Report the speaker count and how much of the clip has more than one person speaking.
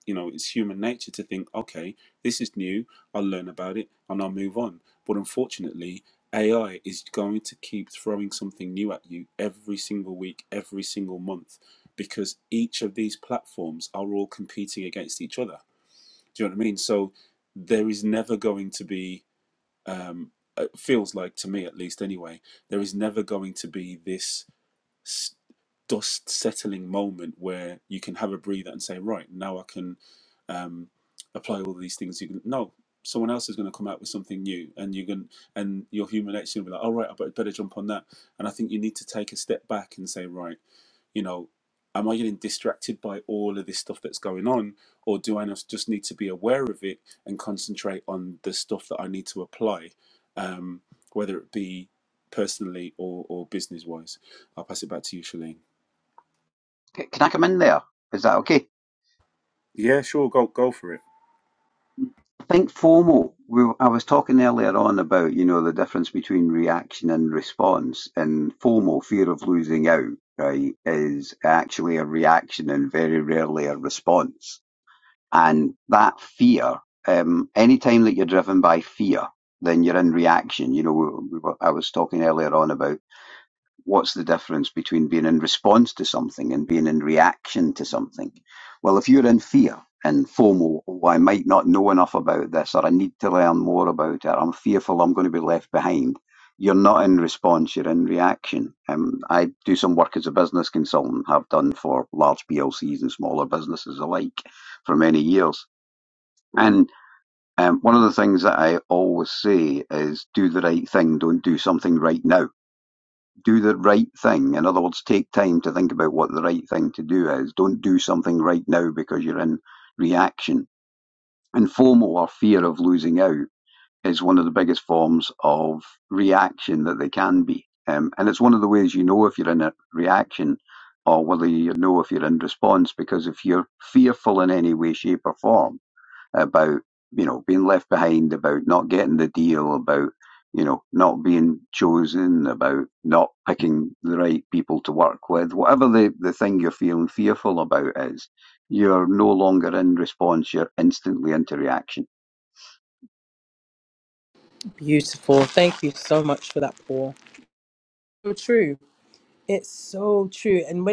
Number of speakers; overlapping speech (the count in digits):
3, no overlap